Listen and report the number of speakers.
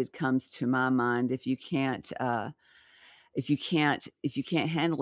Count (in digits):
1